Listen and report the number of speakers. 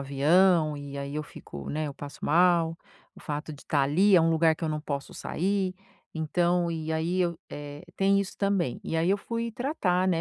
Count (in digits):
1